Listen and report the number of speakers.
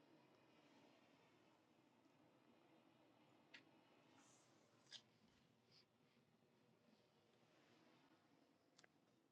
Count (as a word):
zero